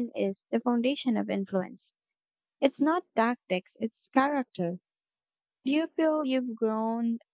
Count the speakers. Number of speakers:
one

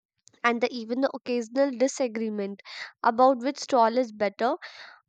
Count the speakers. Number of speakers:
one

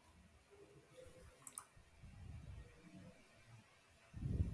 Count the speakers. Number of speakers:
zero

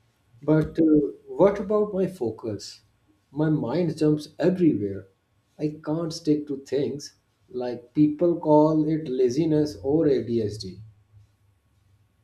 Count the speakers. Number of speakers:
one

